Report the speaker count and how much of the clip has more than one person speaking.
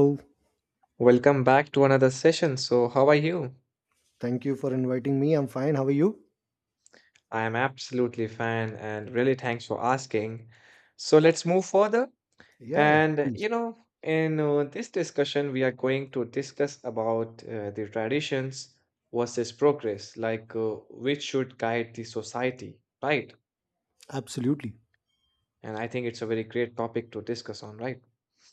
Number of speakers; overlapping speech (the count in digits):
2, about 2%